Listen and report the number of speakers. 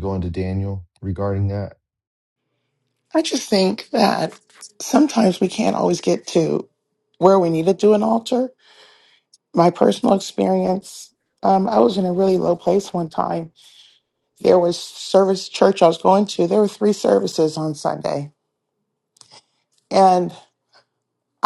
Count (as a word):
two